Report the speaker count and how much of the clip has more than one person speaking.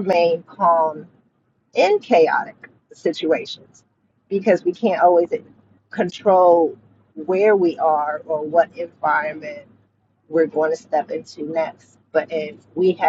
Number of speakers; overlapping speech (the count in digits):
1, no overlap